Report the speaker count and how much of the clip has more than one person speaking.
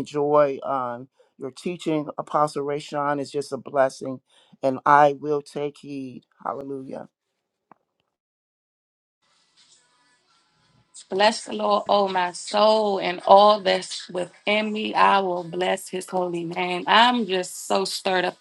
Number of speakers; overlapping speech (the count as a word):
two, no overlap